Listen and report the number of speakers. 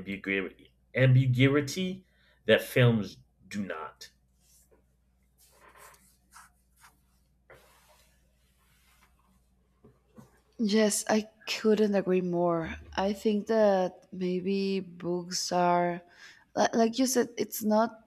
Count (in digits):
2